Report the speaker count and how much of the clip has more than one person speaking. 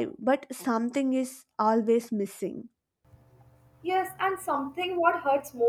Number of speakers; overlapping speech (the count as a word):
two, no overlap